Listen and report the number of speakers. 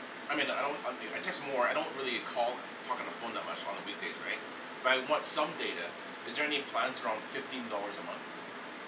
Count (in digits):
1